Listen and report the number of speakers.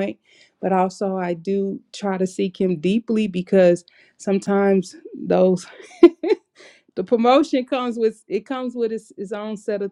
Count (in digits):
1